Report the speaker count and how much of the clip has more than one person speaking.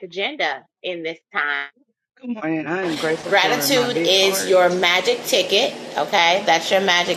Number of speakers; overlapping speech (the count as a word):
two, about 18%